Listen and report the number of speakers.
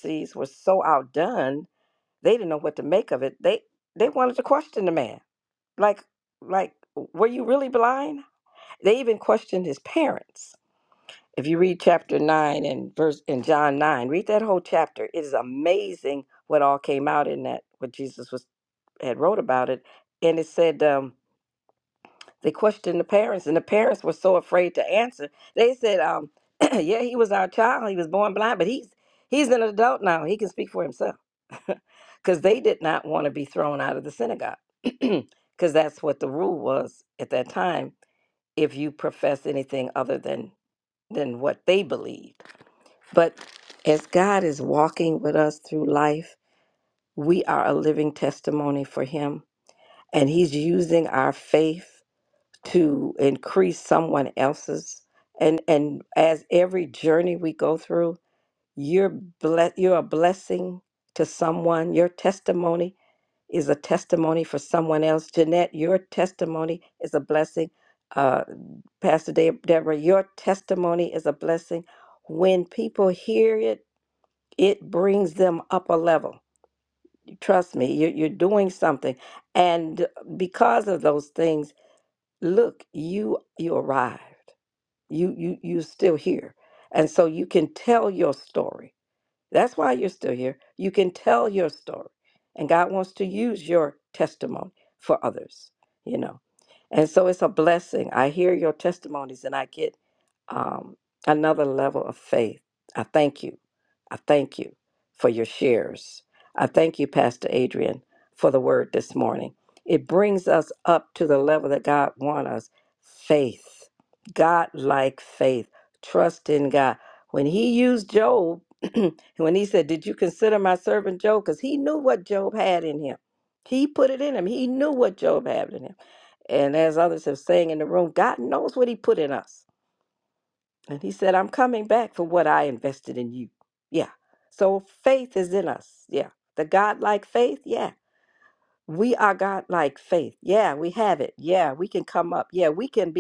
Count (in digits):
1